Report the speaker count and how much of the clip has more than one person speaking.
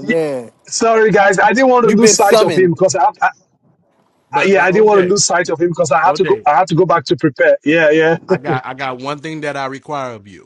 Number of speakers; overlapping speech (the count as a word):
three, about 20%